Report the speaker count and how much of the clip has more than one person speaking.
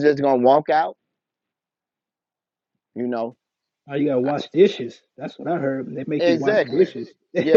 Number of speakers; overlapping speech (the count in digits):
2, about 13%